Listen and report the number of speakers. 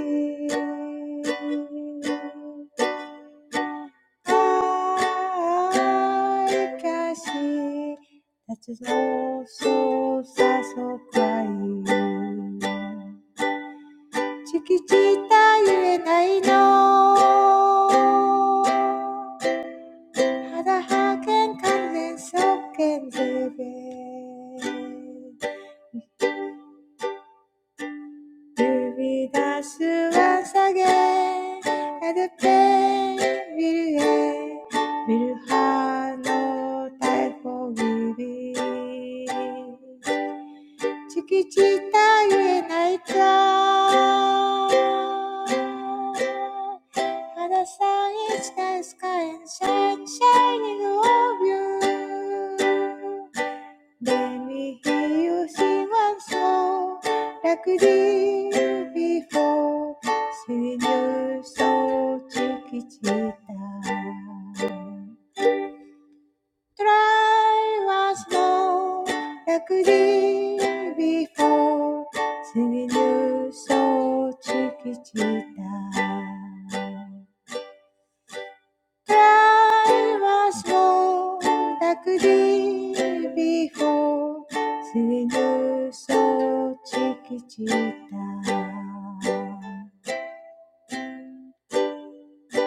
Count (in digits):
1